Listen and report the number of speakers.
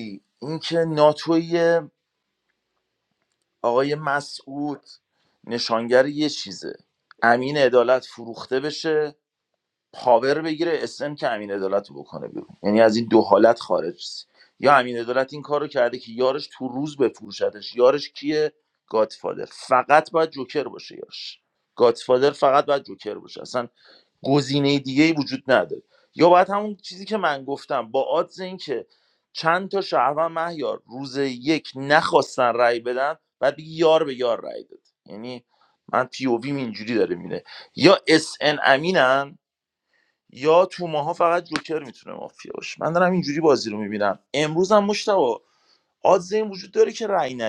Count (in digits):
1